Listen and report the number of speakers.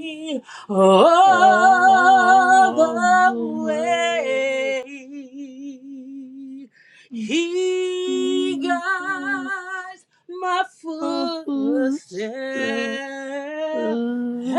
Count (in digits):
2